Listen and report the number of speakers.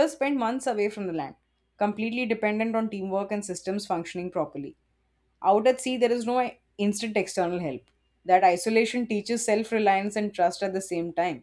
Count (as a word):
one